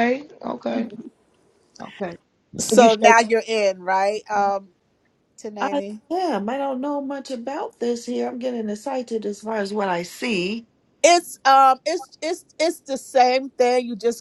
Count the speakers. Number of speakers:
3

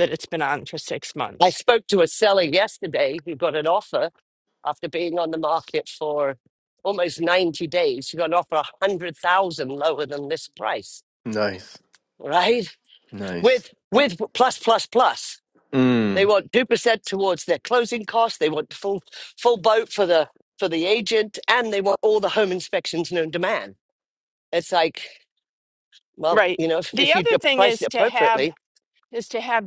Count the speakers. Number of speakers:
3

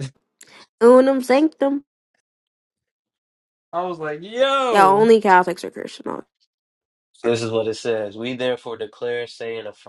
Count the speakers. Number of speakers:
3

